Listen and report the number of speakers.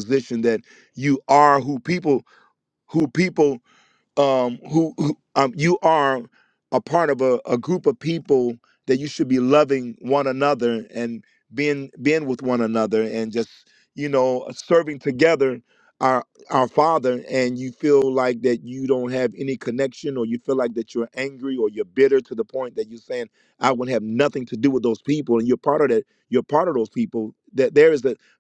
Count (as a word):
one